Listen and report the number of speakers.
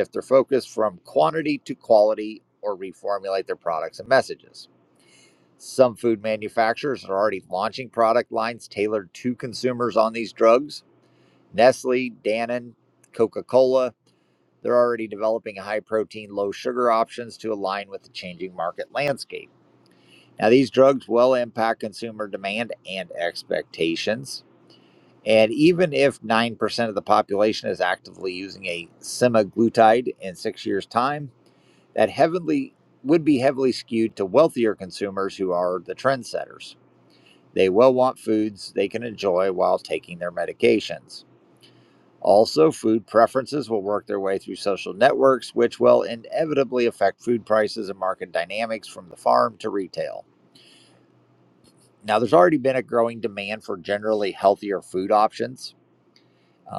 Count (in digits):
1